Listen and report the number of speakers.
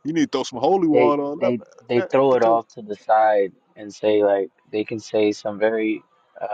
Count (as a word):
two